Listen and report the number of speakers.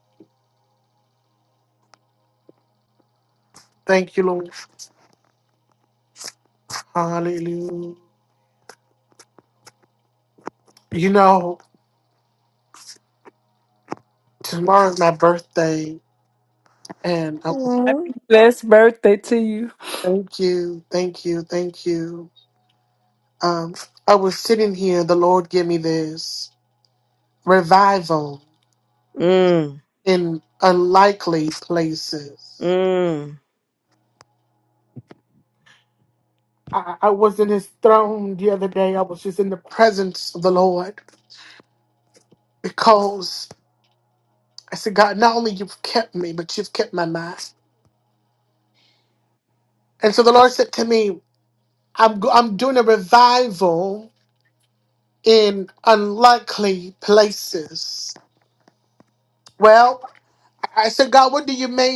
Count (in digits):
3